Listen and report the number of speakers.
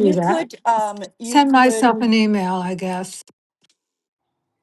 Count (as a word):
two